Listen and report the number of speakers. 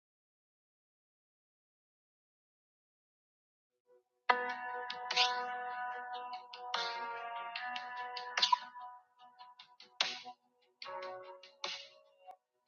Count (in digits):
0